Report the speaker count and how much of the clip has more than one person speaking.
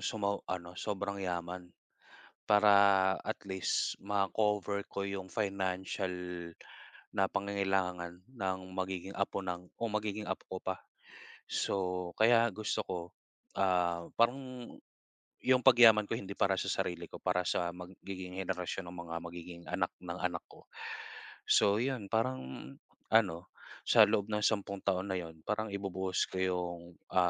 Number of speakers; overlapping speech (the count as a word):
one, no overlap